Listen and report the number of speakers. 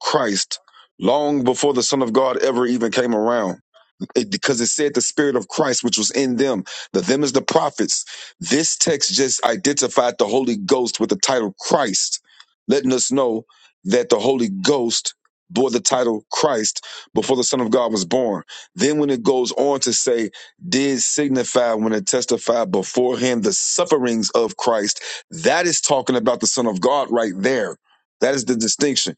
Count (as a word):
one